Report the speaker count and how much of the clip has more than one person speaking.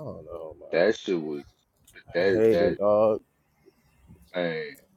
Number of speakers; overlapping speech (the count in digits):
2, about 15%